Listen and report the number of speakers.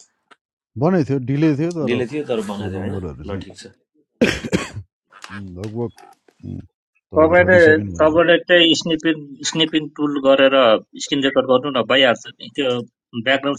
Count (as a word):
three